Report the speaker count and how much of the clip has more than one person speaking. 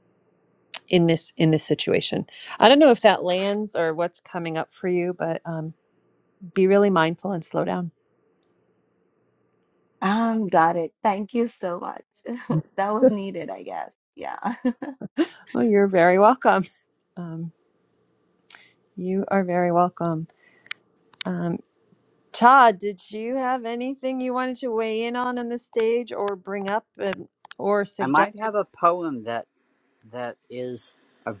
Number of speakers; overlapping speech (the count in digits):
3, about 1%